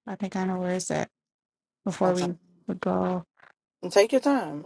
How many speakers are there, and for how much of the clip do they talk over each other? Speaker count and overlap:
two, about 6%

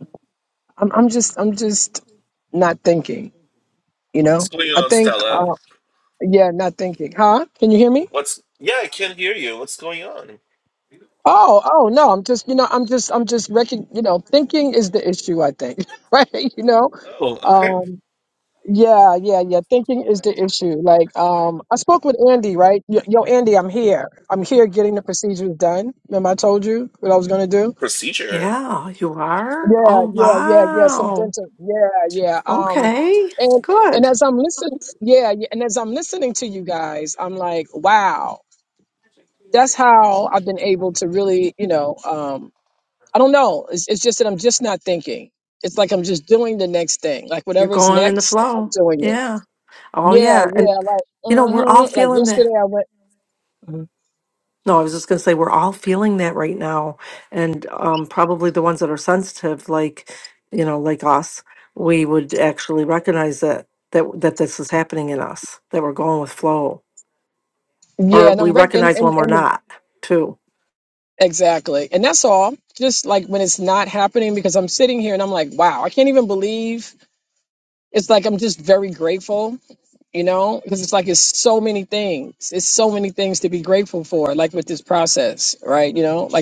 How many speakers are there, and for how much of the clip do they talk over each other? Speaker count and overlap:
three, about 10%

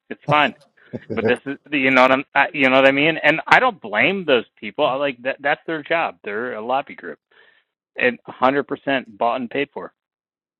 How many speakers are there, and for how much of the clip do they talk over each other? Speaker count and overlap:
one, no overlap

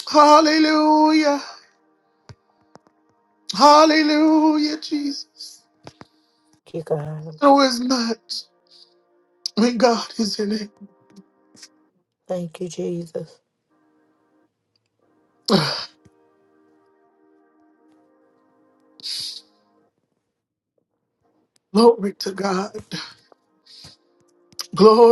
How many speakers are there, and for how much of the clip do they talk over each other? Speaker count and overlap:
two, no overlap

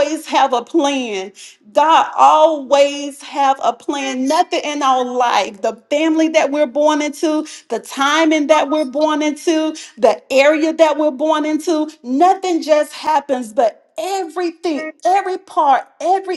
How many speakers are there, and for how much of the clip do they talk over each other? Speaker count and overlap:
one, no overlap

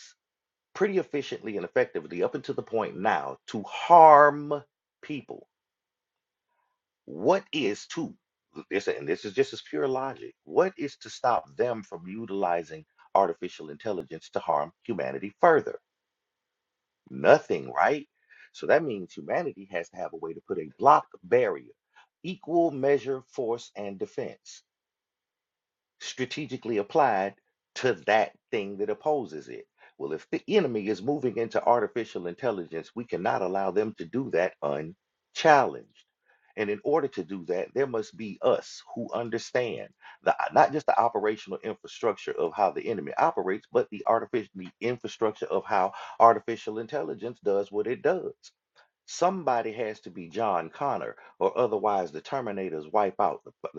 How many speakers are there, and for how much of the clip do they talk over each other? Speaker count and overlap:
one, no overlap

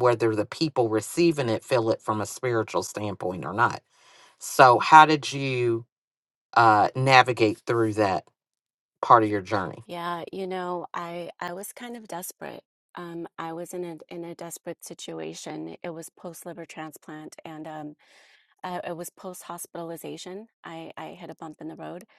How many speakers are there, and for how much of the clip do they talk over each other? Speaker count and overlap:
two, no overlap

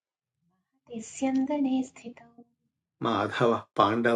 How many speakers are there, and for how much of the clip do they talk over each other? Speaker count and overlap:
two, no overlap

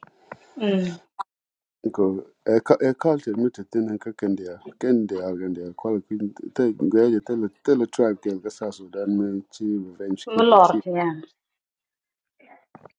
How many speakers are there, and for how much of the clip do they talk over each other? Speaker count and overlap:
two, about 4%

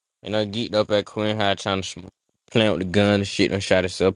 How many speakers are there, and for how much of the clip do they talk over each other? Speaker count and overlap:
one, no overlap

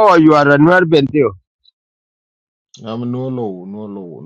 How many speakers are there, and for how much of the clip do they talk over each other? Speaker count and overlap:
two, no overlap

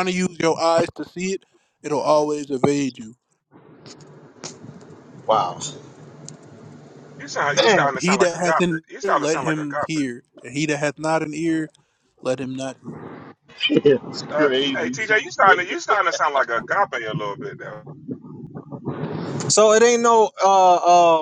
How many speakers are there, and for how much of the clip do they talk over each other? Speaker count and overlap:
four, about 18%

